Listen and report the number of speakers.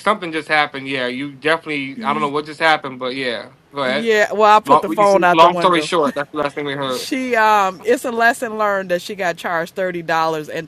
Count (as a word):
two